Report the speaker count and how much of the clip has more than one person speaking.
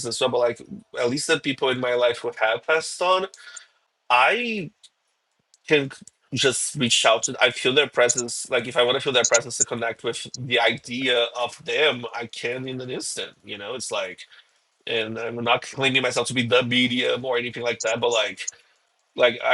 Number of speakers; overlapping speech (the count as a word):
one, no overlap